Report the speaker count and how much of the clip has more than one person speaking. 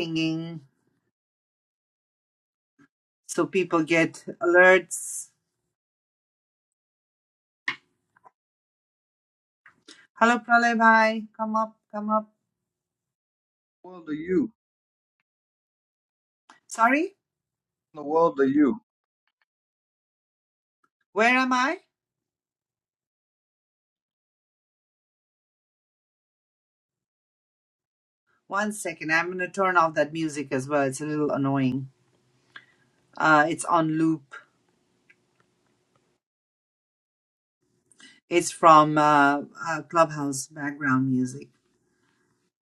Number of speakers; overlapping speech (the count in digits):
2, no overlap